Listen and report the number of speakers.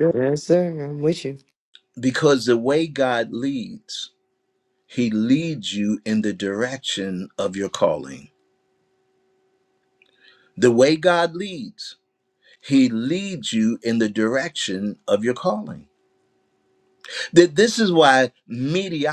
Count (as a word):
two